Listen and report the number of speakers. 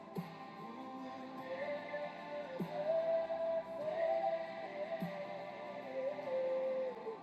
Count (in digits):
0